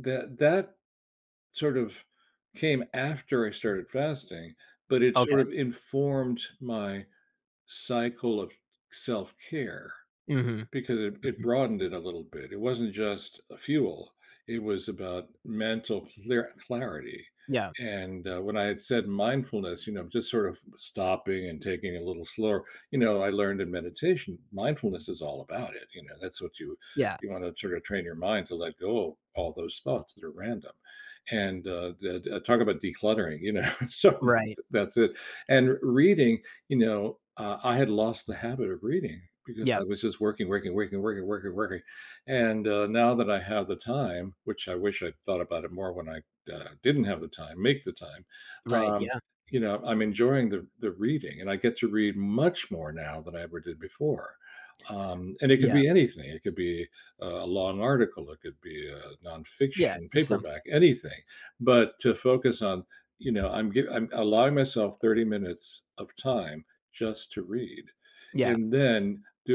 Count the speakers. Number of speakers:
two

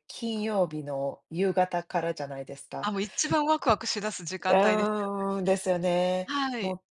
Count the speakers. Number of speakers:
two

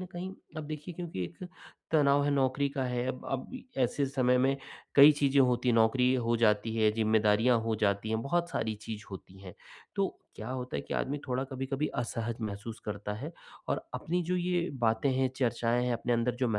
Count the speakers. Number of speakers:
one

